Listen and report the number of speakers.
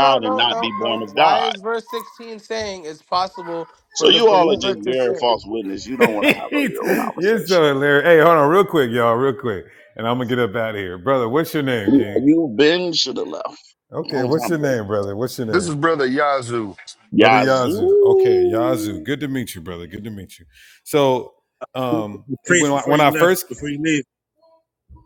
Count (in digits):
5